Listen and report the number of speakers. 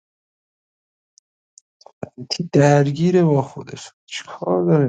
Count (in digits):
1